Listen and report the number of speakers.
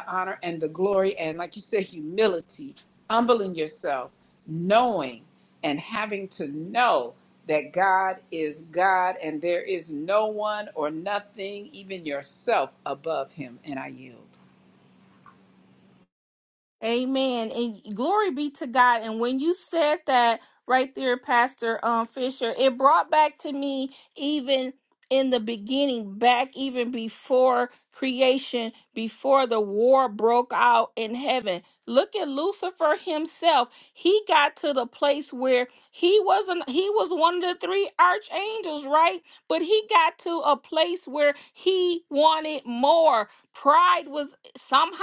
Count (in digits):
2